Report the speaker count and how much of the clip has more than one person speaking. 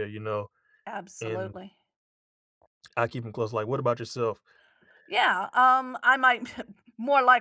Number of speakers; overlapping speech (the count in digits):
2, about 4%